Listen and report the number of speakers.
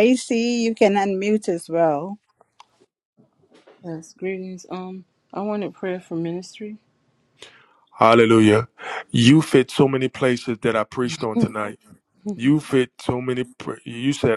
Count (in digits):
3